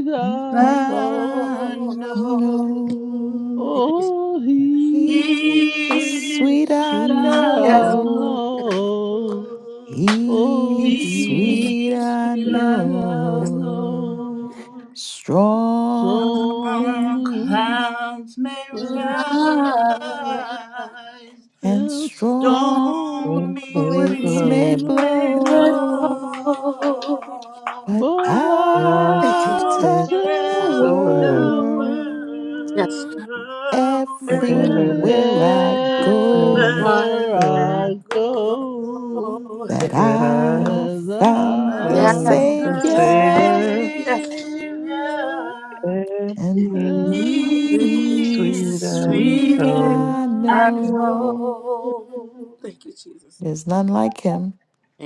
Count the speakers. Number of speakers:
5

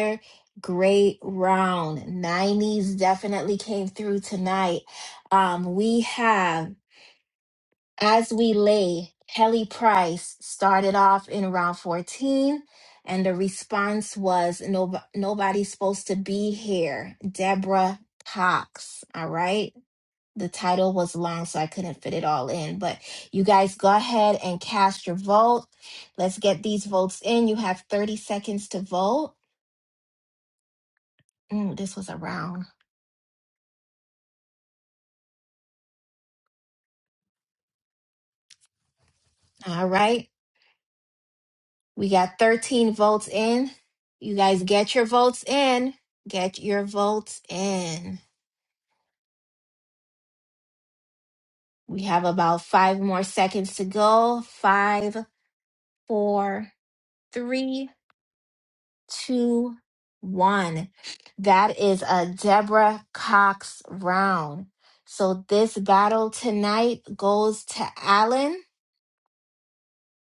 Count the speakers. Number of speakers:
1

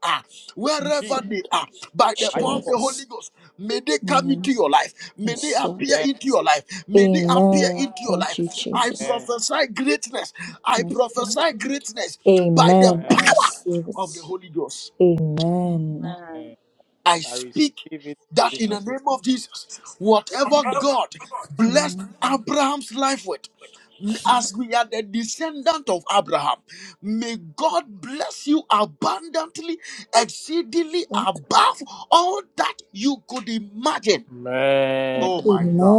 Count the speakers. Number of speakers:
4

